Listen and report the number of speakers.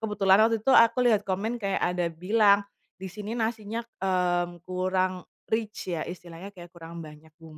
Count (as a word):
one